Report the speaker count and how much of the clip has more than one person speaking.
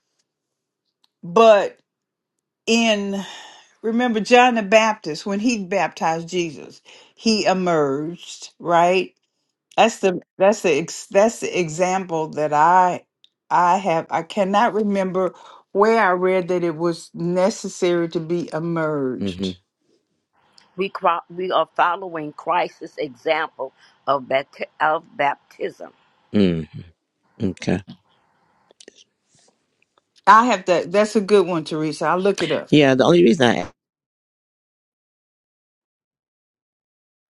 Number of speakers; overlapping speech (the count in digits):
3, about 1%